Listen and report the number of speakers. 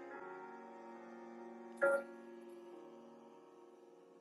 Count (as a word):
zero